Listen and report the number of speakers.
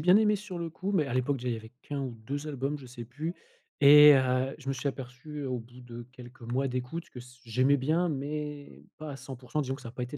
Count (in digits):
1